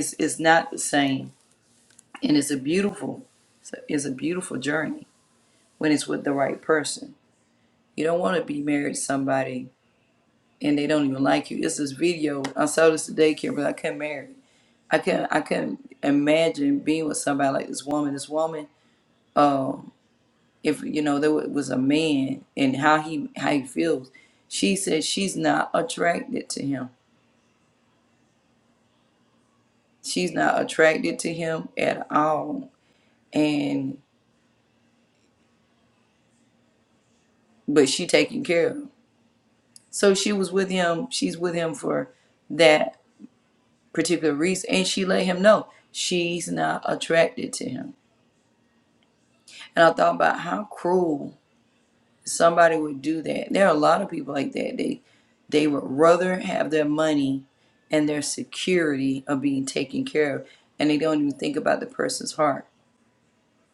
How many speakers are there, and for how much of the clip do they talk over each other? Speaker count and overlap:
1, no overlap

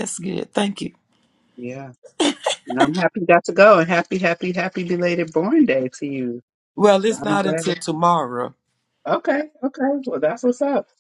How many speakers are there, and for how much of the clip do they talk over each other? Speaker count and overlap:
2, about 5%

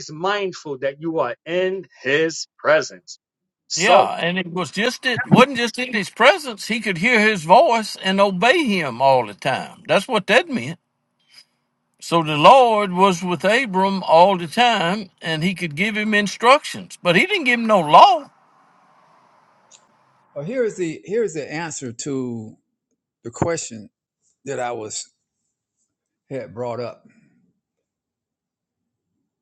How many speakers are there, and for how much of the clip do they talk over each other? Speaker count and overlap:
3, about 1%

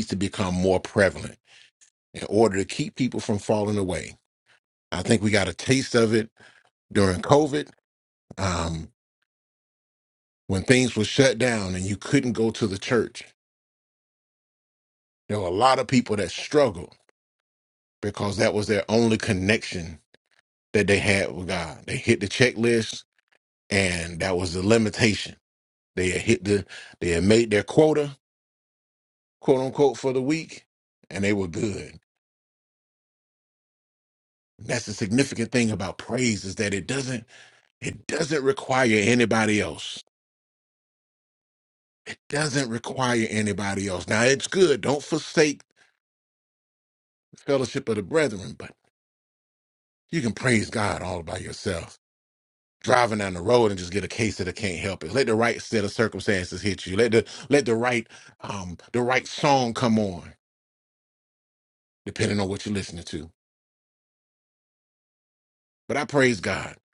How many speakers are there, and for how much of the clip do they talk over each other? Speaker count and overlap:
1, no overlap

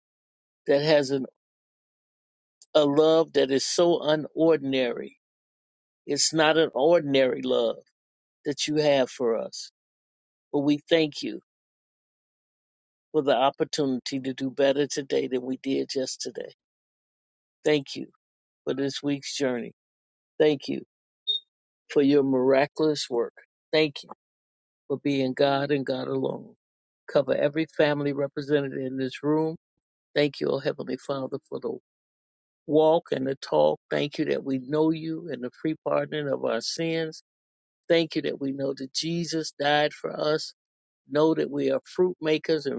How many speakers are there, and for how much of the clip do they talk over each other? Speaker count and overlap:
1, no overlap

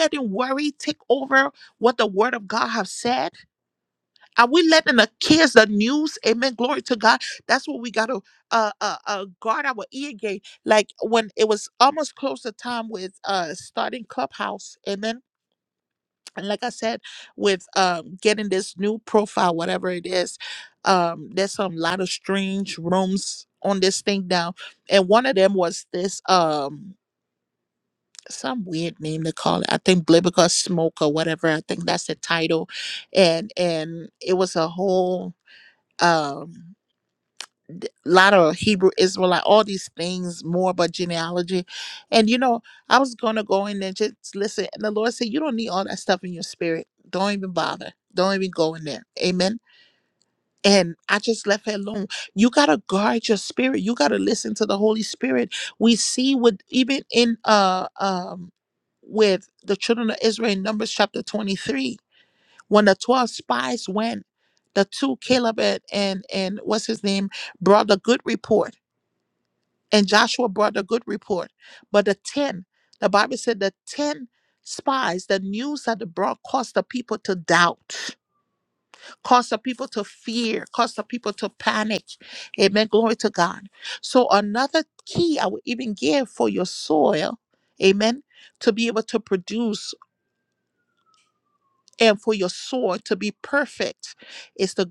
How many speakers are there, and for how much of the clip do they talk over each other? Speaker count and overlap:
1, no overlap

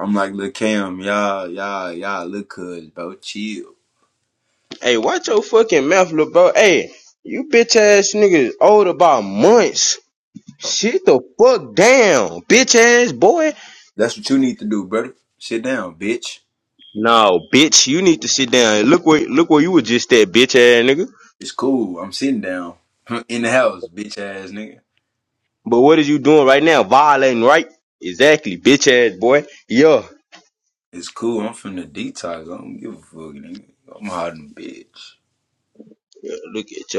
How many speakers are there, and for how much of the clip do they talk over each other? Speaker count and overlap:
2, no overlap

